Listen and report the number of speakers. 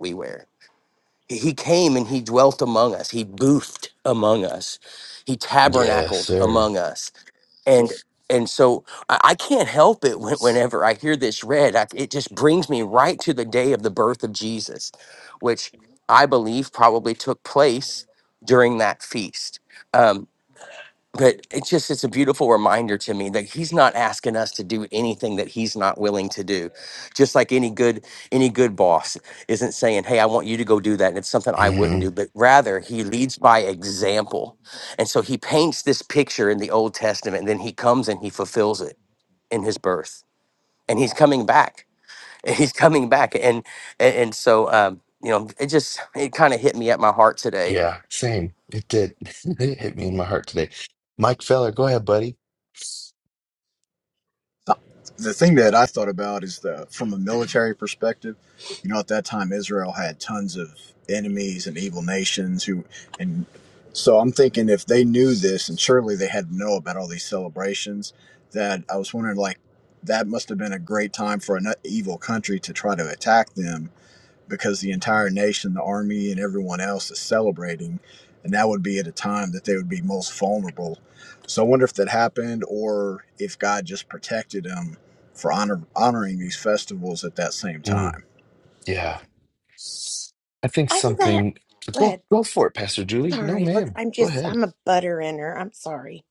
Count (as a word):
four